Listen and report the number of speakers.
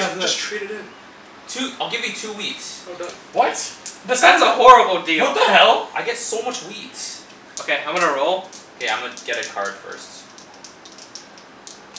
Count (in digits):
4